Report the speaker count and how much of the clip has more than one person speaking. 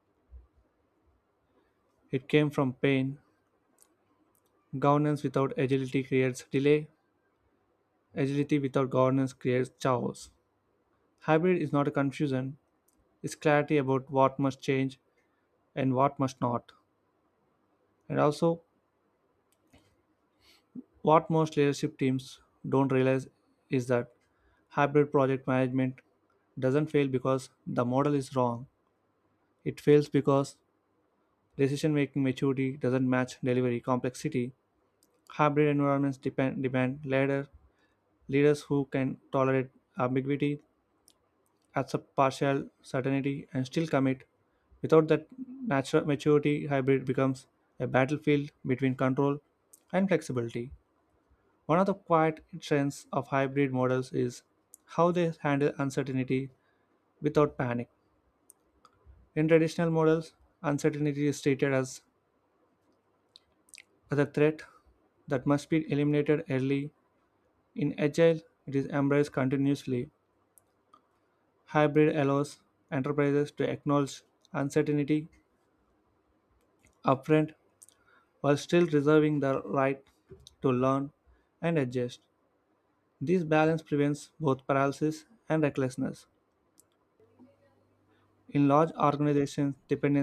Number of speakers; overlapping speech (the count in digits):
1, no overlap